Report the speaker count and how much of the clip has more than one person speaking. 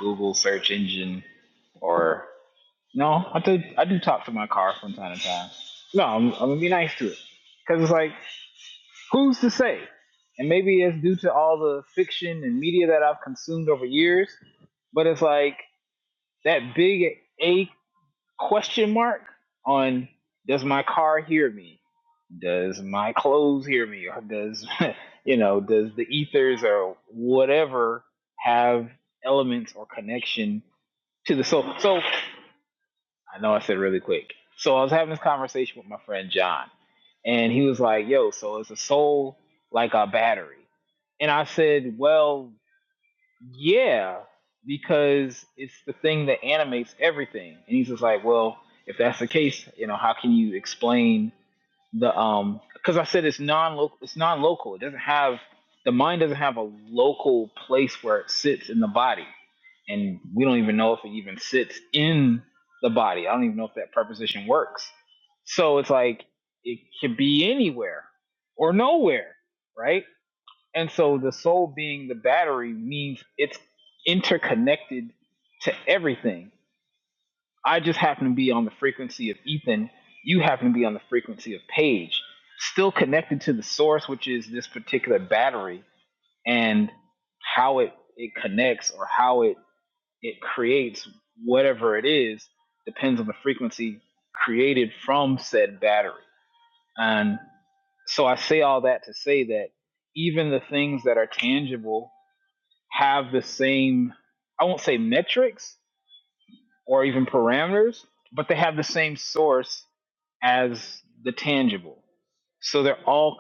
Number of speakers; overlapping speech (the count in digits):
1, no overlap